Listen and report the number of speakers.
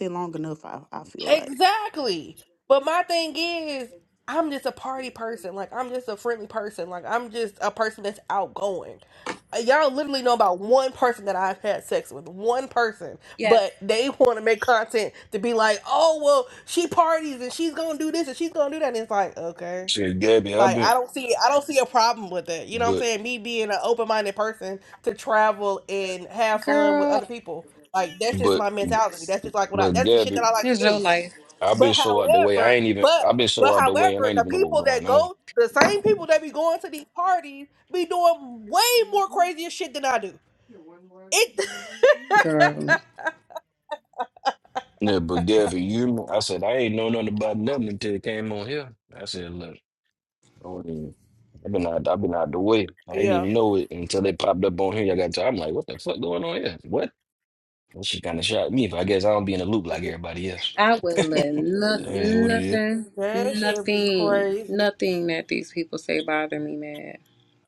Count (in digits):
4